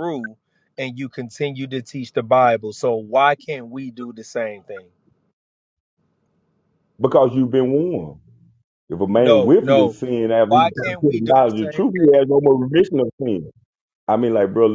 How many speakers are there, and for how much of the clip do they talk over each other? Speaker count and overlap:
2, about 16%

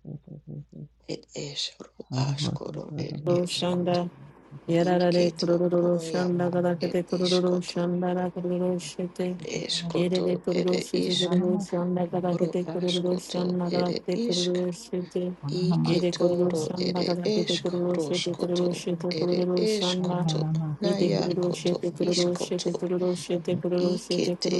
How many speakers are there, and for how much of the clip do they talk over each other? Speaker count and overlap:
3, about 83%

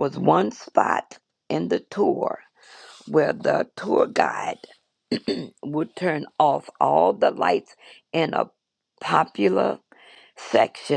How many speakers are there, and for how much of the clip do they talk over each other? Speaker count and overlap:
1, no overlap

